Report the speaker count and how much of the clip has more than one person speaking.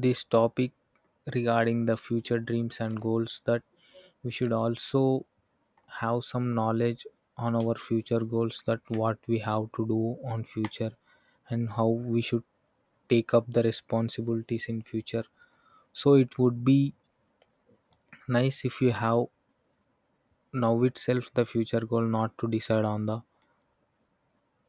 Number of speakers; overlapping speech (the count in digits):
1, no overlap